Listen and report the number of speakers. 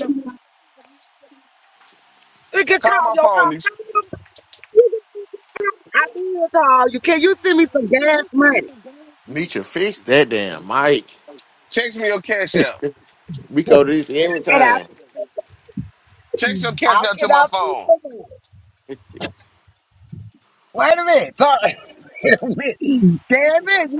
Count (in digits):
3